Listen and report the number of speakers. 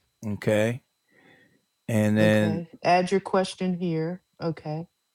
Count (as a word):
two